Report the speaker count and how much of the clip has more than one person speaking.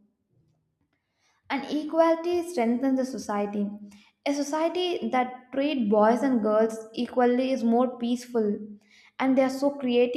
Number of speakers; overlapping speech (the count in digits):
1, no overlap